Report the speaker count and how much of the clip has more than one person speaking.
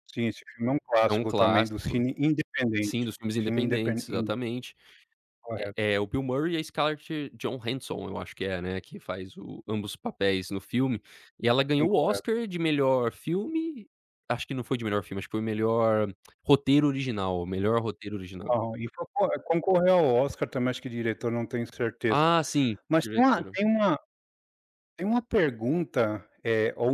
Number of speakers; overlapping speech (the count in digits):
2, about 13%